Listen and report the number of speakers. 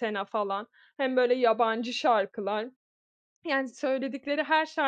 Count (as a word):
one